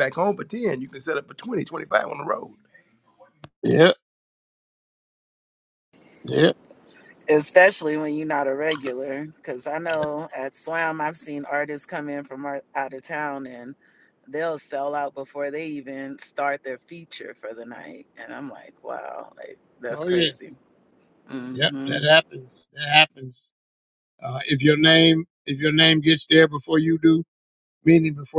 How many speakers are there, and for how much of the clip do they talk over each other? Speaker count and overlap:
three, about 3%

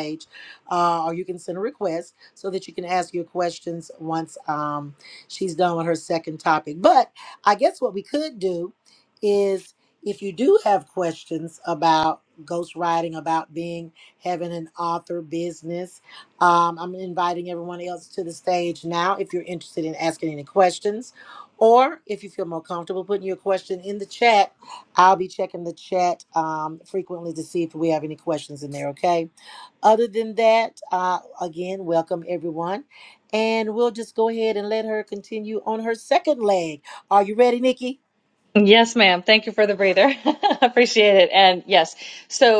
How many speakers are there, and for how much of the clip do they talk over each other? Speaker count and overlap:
two, no overlap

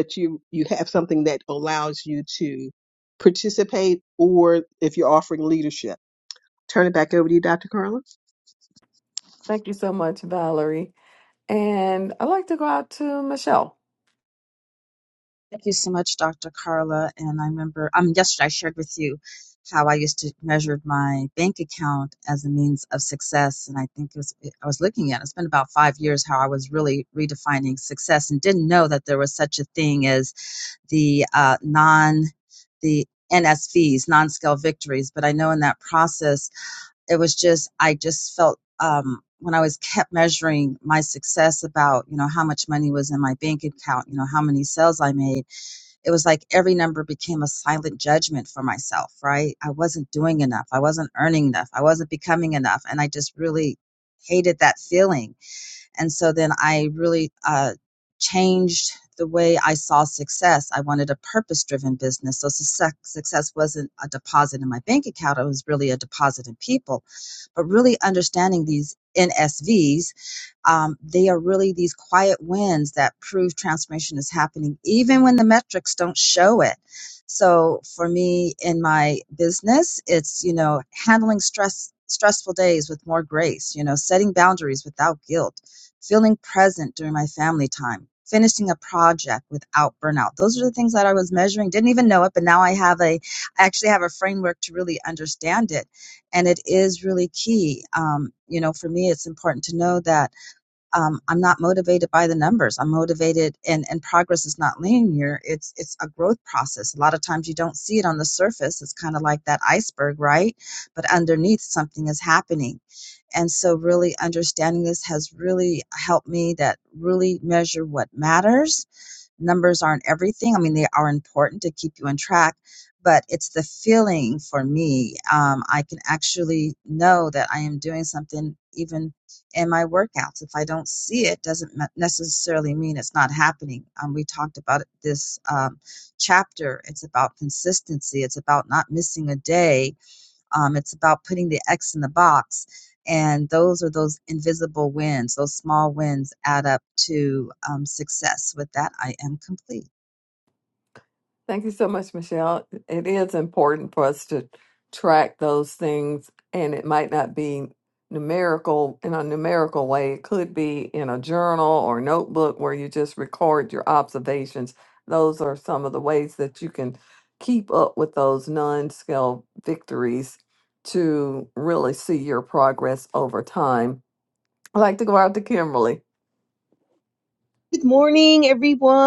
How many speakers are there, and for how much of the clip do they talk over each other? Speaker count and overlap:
four, no overlap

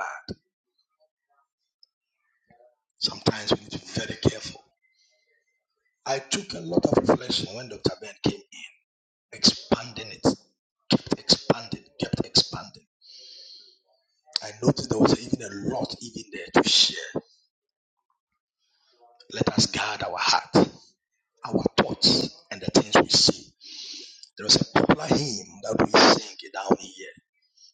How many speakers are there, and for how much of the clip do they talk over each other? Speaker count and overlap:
one, no overlap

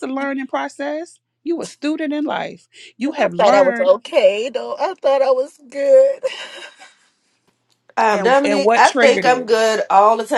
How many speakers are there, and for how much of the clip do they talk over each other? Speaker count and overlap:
three, about 22%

